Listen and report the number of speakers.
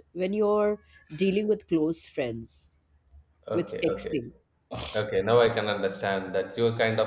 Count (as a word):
two